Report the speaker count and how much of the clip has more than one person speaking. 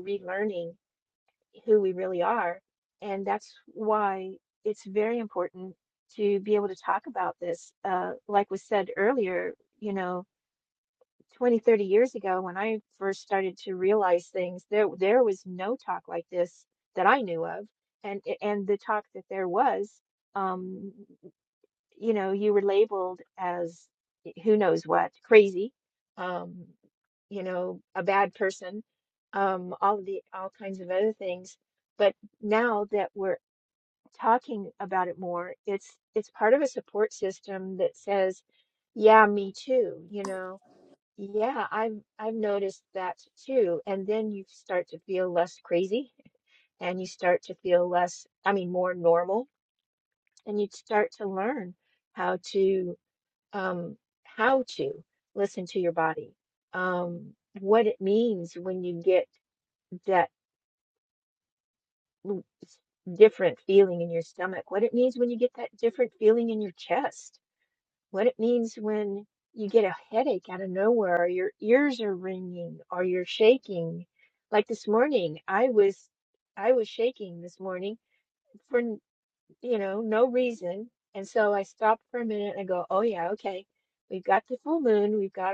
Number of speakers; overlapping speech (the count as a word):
one, no overlap